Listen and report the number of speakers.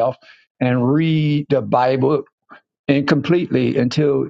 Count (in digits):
1